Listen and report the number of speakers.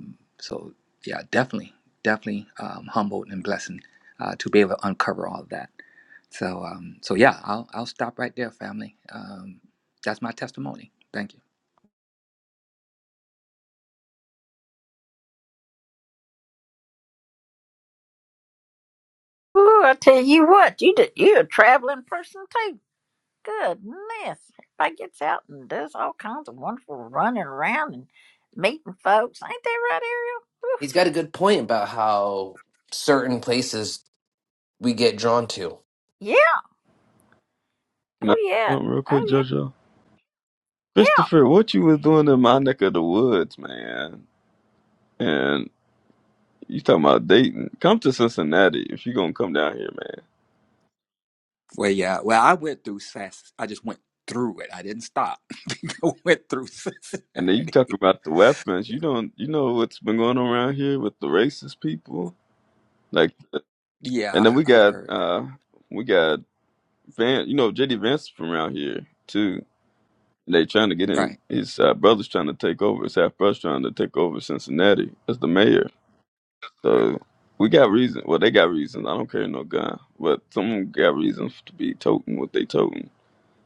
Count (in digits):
4